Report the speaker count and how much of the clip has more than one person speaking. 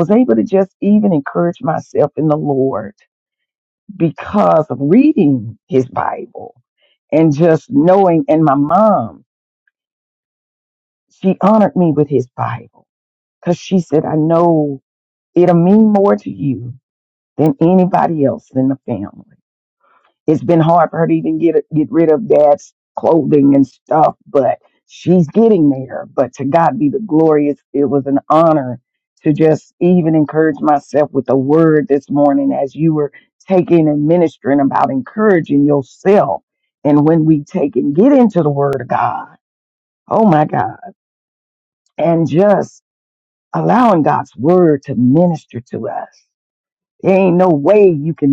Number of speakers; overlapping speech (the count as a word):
one, no overlap